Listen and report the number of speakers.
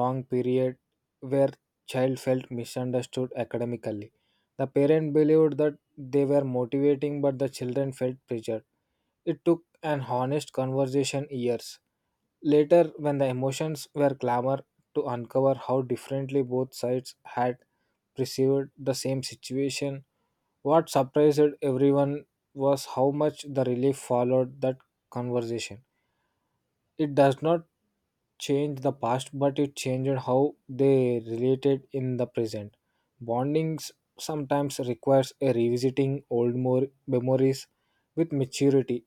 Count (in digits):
1